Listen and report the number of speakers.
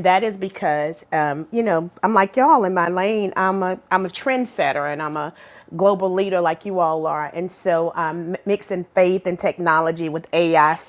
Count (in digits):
1